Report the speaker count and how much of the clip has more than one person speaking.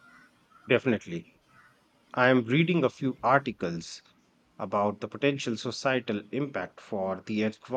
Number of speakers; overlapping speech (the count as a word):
one, no overlap